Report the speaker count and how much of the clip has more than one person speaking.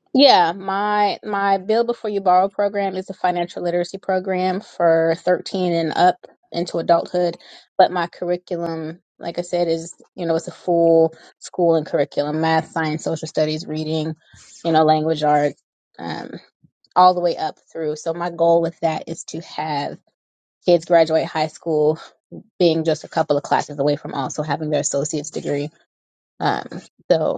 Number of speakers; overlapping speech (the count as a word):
one, no overlap